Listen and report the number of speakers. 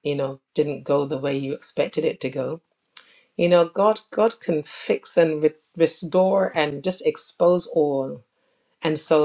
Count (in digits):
1